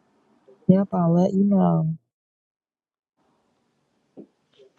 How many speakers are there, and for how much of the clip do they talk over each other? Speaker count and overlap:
1, no overlap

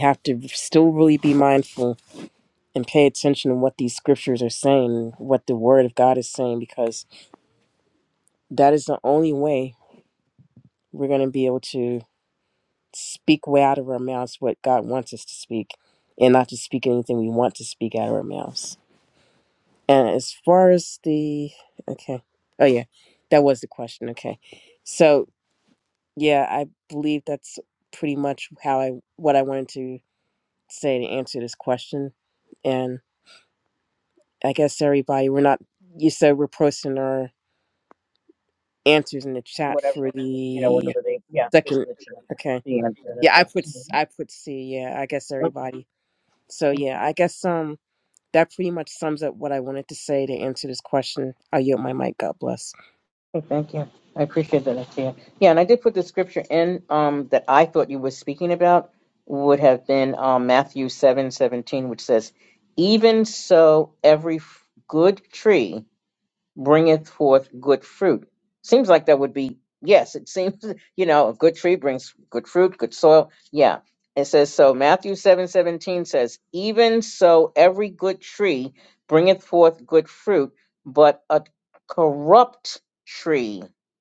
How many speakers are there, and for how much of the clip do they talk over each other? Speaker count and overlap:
2, about 2%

